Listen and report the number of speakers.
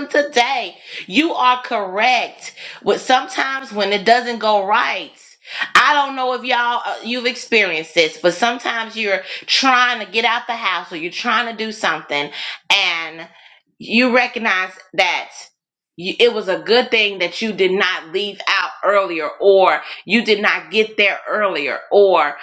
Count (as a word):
one